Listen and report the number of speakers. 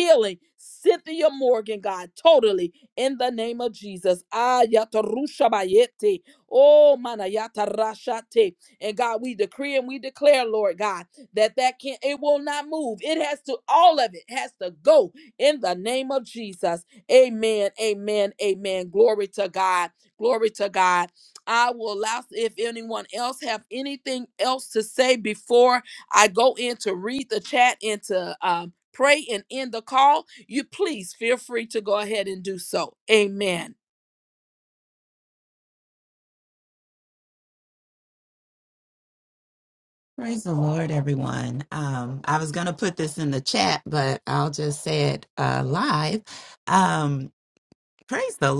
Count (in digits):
2